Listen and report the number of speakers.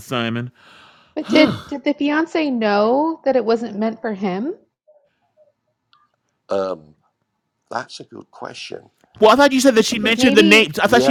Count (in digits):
3